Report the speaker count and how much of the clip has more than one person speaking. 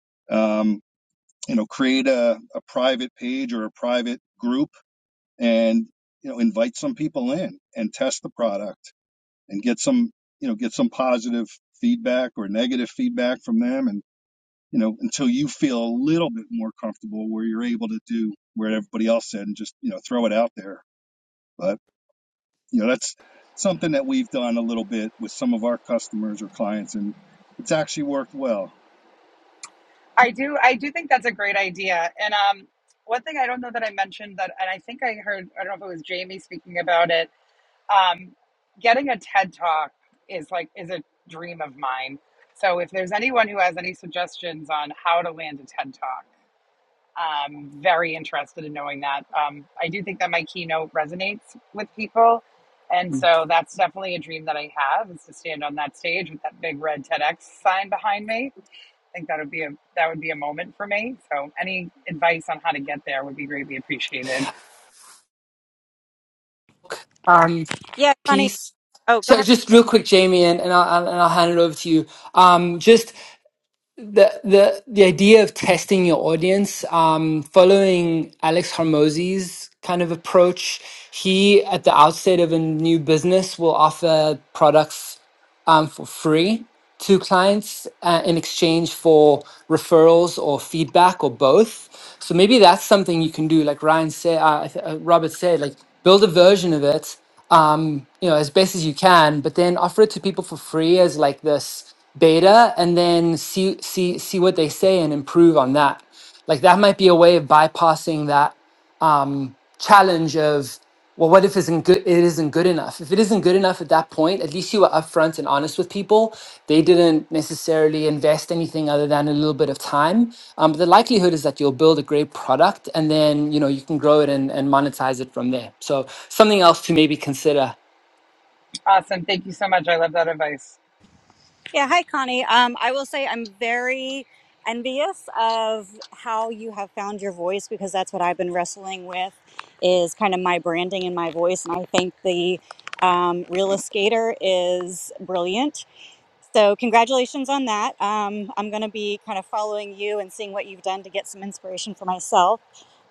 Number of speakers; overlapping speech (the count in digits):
4, about 1%